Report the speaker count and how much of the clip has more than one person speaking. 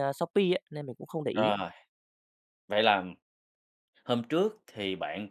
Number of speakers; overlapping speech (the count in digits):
2, about 3%